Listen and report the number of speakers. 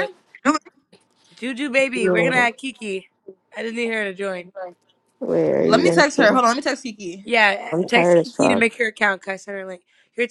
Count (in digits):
3